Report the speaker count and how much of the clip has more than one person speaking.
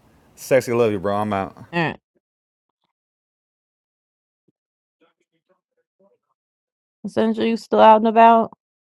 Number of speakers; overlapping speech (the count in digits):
2, no overlap